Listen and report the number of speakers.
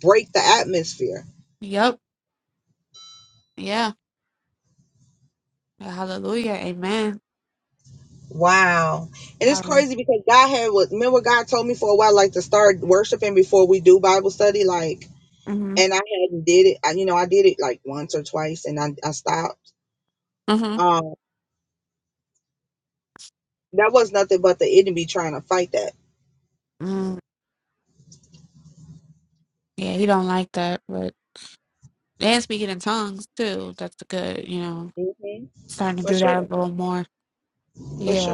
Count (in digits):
2